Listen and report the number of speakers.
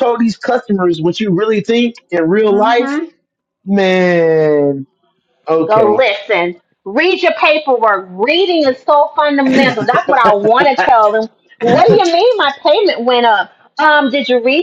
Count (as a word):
two